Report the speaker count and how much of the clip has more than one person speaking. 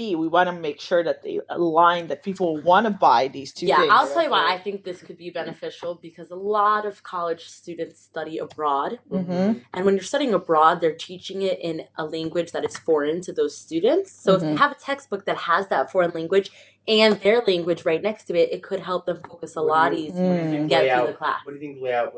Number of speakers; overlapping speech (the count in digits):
3, about 16%